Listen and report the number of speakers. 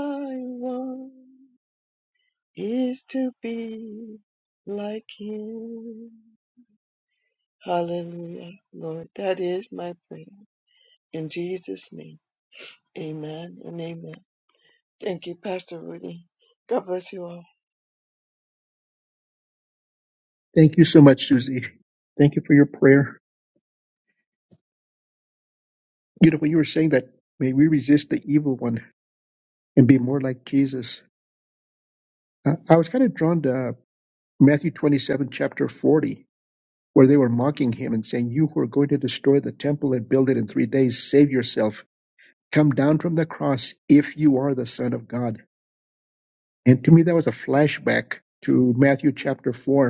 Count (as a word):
two